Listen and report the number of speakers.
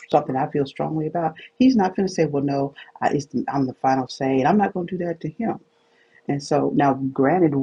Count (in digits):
1